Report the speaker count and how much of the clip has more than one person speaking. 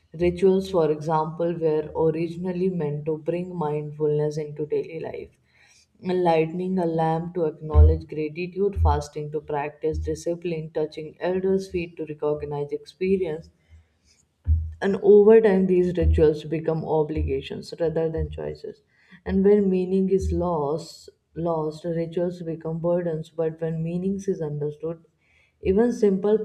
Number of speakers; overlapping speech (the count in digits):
1, no overlap